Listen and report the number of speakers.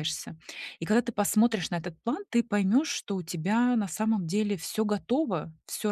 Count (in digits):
1